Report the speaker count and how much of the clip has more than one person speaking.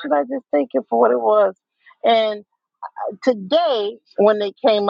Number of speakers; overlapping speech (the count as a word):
one, no overlap